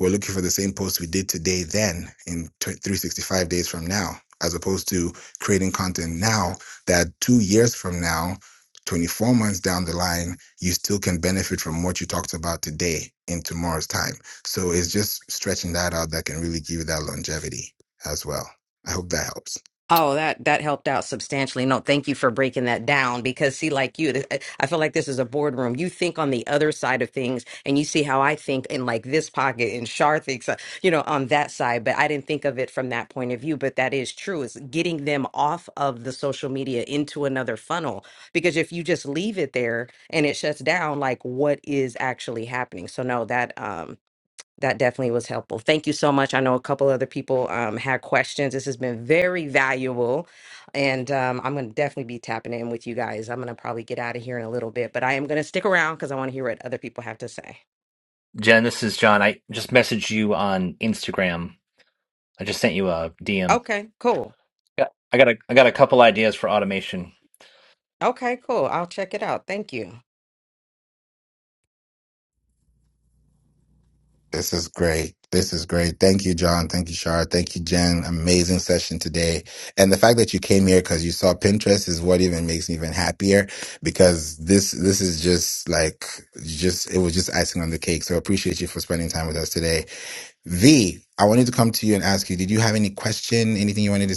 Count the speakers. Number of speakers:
3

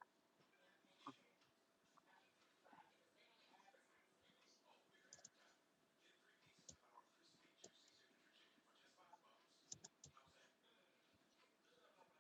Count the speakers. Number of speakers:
0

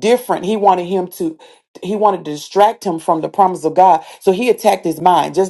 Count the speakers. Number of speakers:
1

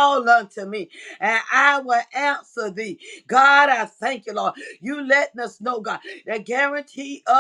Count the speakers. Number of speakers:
1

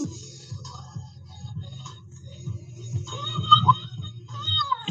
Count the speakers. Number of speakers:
0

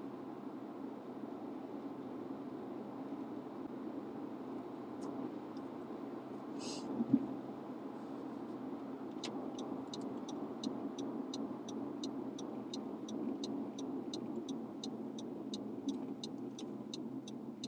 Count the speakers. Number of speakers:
0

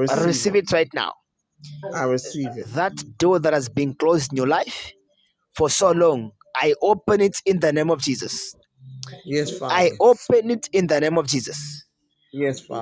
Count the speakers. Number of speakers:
2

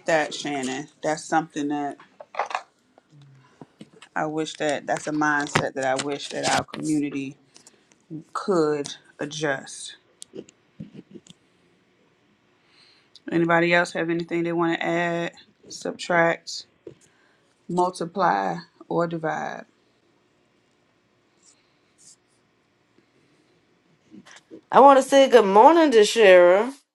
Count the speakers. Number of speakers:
2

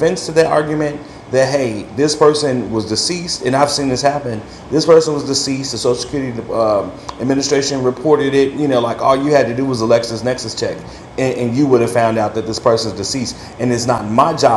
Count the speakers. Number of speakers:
1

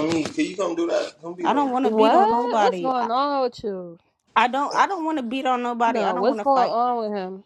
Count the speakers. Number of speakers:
3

